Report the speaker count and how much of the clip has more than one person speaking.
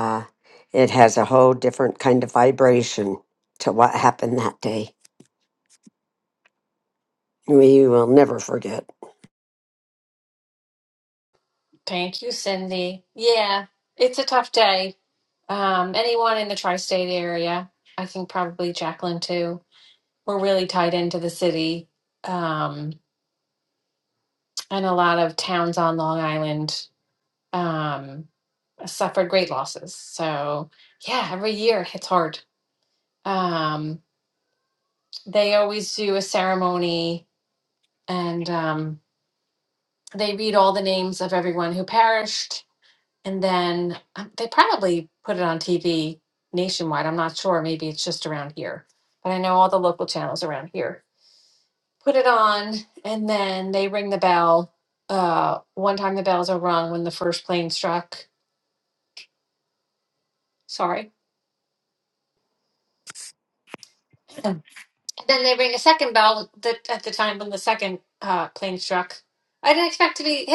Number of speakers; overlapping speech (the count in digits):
2, no overlap